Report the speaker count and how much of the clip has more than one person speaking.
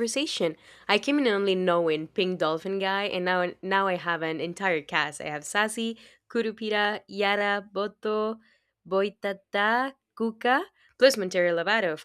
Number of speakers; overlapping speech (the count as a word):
one, no overlap